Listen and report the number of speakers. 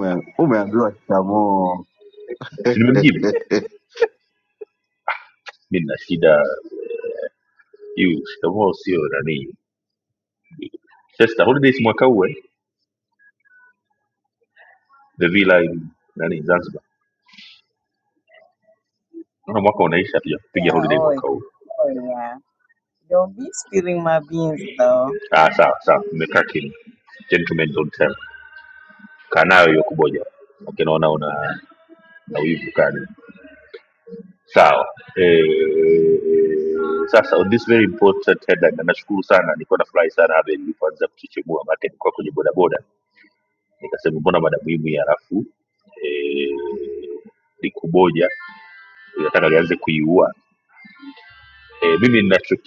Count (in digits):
3